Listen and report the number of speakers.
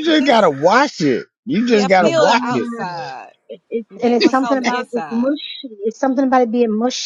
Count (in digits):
3